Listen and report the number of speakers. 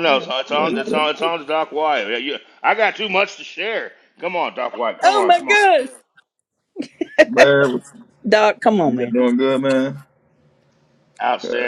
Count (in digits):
3